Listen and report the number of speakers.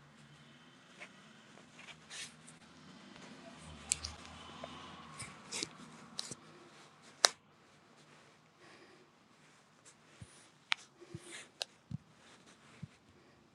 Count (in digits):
0